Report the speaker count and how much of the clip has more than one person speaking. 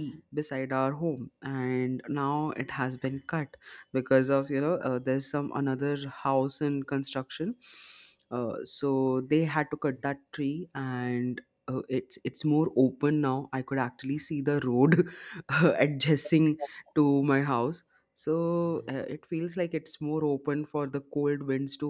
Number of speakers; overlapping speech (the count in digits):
1, no overlap